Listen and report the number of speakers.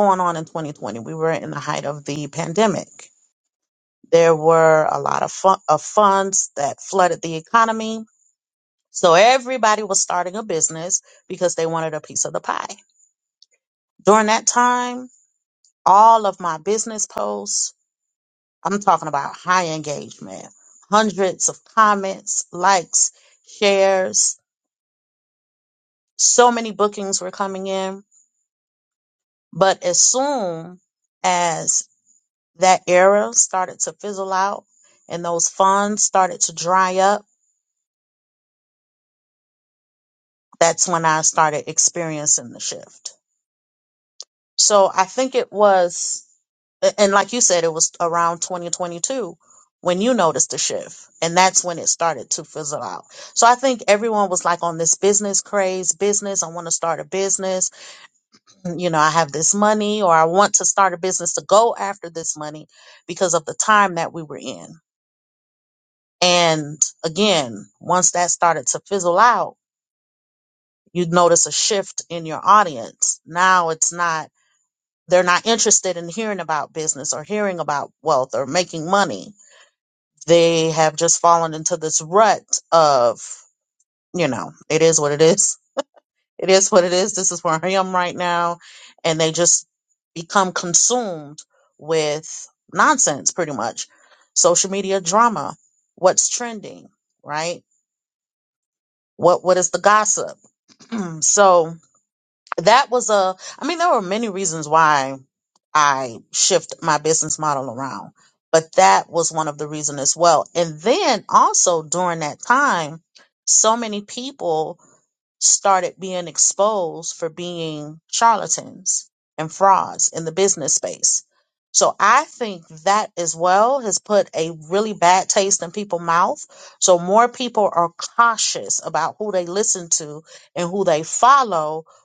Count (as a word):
one